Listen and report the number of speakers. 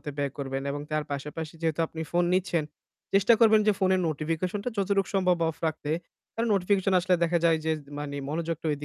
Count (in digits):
1